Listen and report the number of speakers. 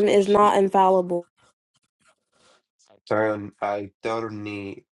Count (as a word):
two